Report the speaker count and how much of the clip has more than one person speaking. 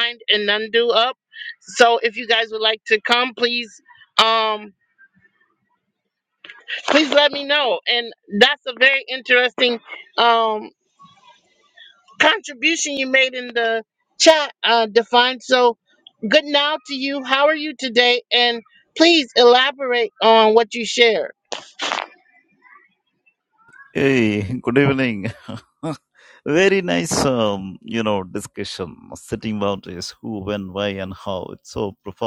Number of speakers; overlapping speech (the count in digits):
2, no overlap